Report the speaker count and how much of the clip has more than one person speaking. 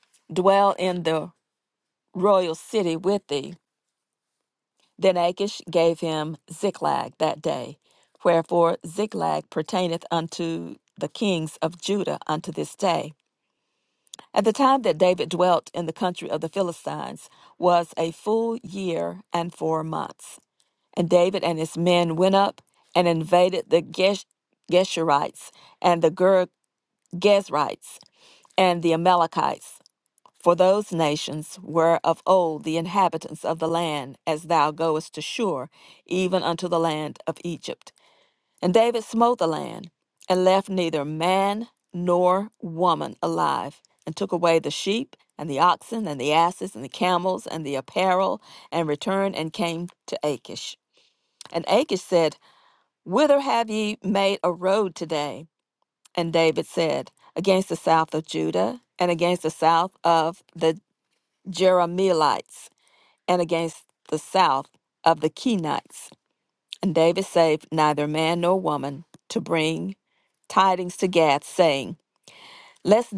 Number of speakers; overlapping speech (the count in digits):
1, no overlap